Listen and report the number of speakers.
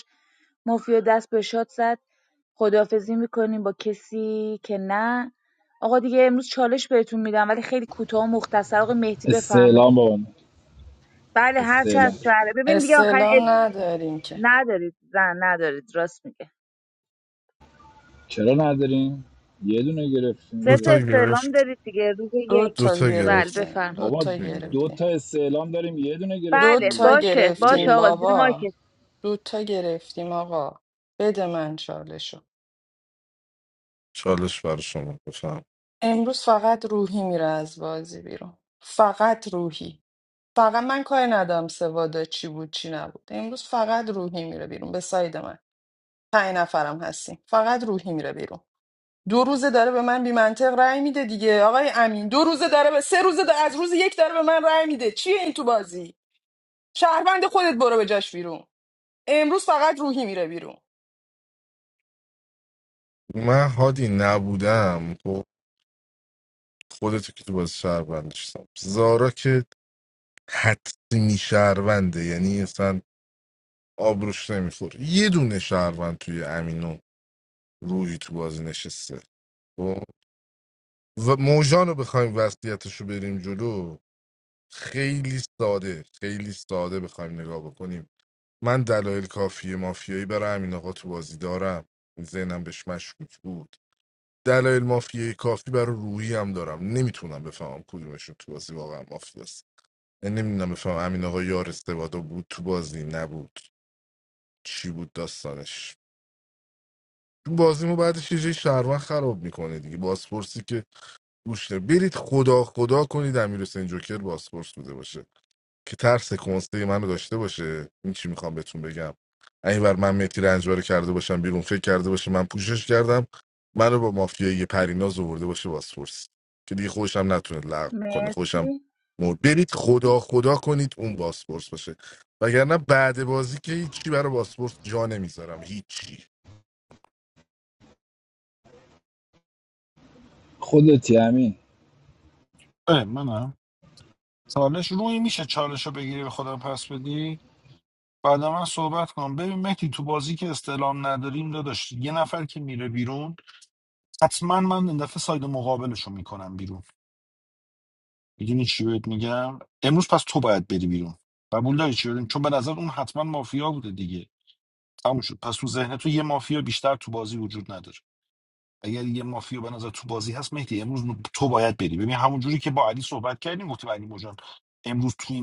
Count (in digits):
5